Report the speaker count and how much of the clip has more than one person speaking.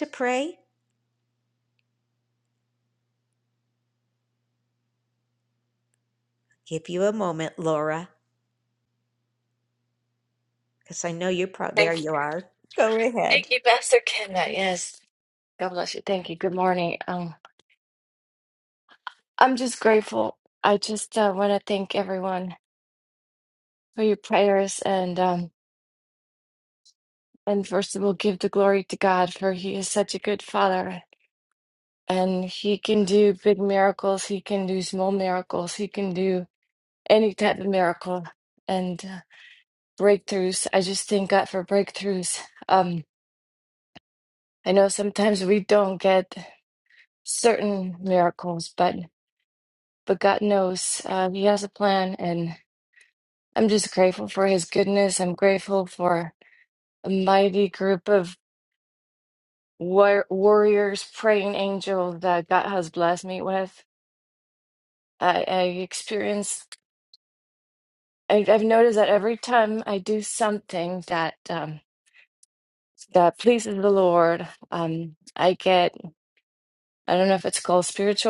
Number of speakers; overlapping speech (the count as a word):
two, about 1%